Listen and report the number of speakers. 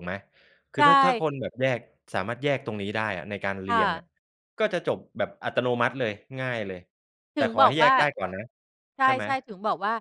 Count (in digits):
2